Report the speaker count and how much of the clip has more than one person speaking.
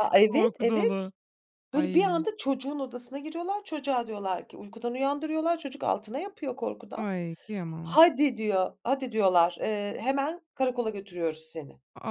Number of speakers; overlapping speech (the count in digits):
2, about 10%